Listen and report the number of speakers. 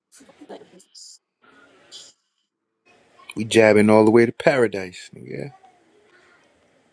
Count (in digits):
1